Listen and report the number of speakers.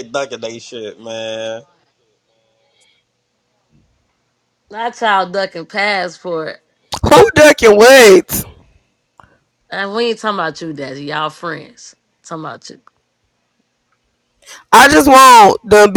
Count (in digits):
3